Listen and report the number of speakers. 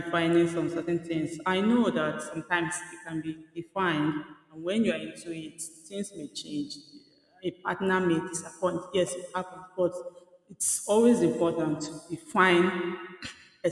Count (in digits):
1